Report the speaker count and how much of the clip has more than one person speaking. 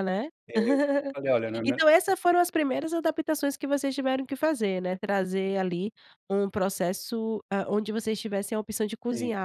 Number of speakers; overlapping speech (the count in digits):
2, about 4%